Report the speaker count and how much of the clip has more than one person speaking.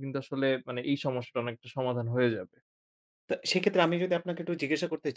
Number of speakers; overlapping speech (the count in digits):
2, no overlap